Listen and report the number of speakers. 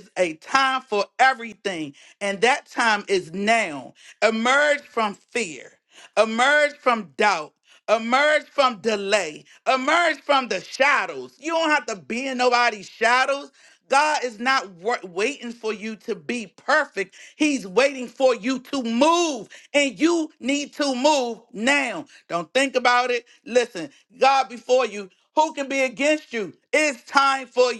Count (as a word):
one